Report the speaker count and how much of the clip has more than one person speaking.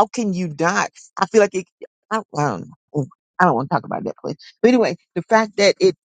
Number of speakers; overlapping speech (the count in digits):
1, no overlap